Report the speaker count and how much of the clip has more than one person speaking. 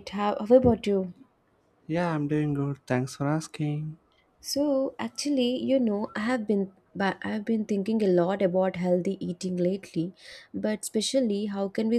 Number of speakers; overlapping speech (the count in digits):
2, no overlap